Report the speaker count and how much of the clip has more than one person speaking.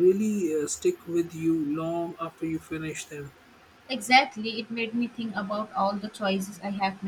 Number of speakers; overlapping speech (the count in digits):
2, no overlap